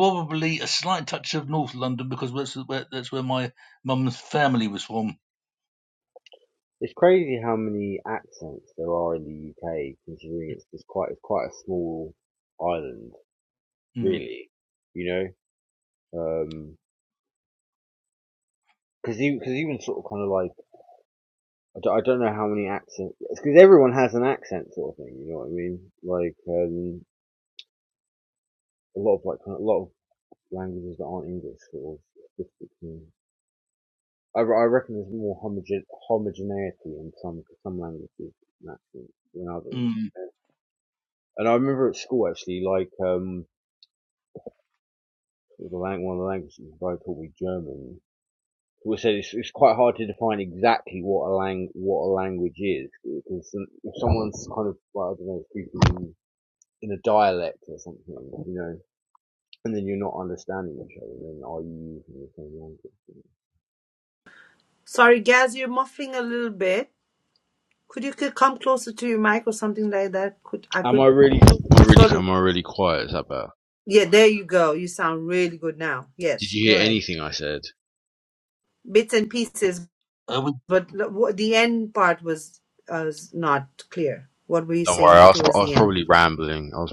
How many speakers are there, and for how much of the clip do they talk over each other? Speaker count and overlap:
3, about 3%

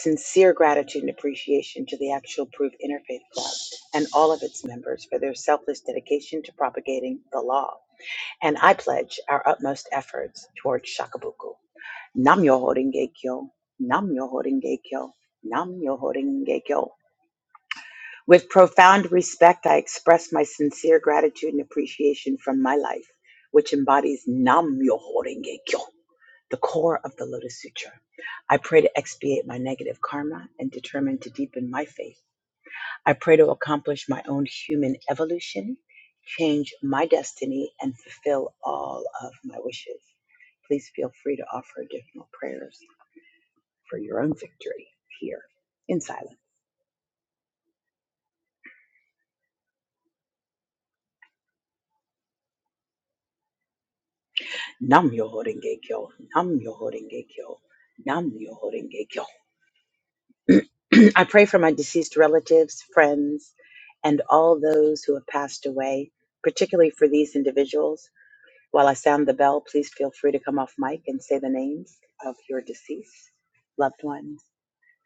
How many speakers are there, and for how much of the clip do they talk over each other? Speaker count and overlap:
1, no overlap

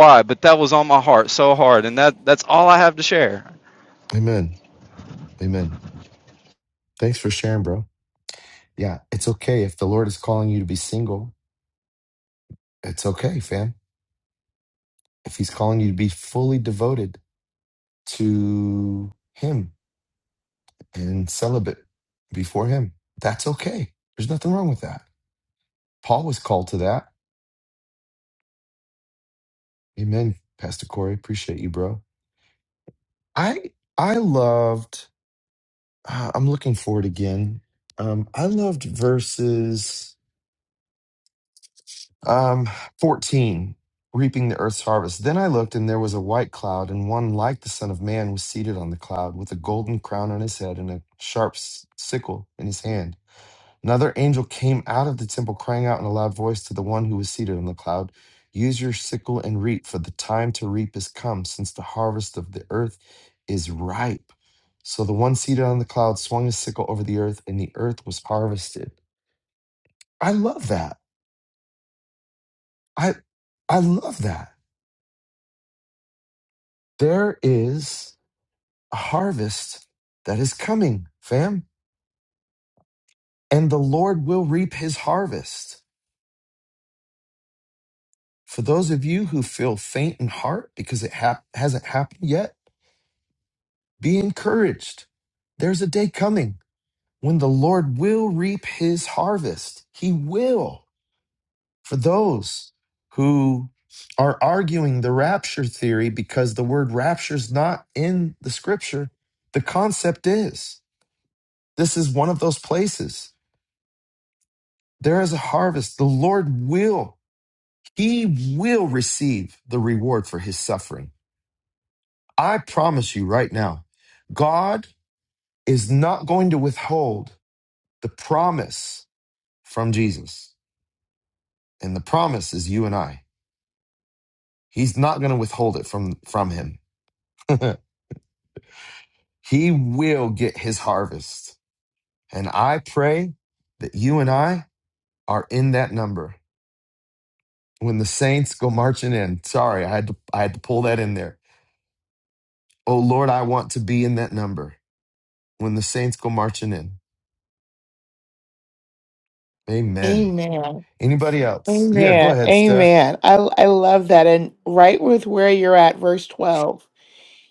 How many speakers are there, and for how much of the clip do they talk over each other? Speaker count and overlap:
3, about 1%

